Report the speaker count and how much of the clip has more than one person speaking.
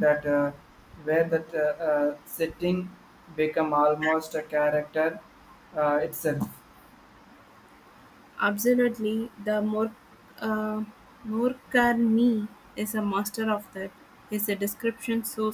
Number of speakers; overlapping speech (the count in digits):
2, no overlap